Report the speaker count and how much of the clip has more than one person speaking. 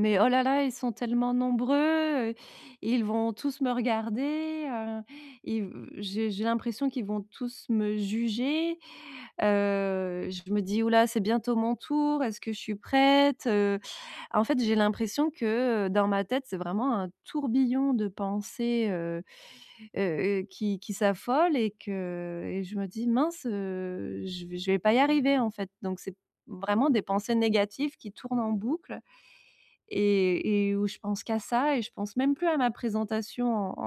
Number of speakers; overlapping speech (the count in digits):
1, no overlap